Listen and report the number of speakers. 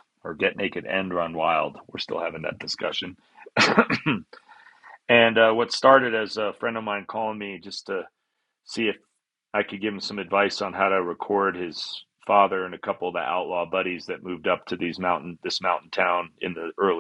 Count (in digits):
1